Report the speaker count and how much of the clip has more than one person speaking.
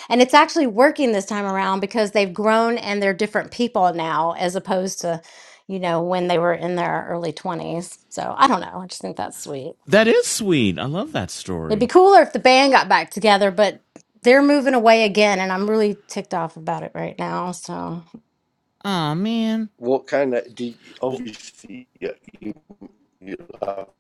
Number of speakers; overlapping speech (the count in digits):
3, about 1%